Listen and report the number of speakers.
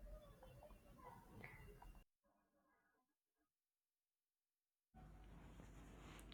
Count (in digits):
0